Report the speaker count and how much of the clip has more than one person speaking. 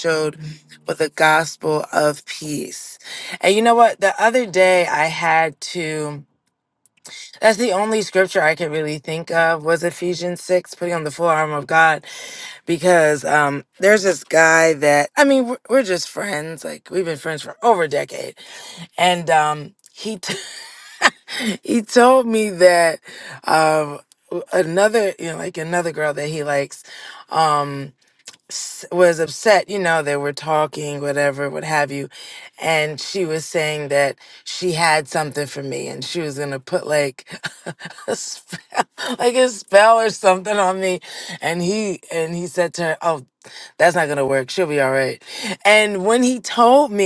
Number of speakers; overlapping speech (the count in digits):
1, no overlap